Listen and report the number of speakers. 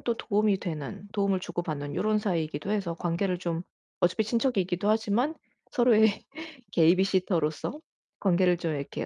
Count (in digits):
1